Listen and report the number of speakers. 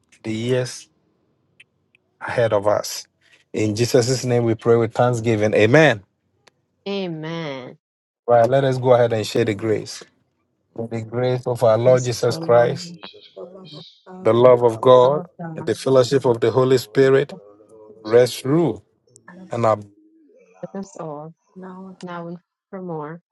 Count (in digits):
3